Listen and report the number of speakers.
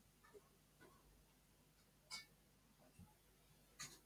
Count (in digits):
0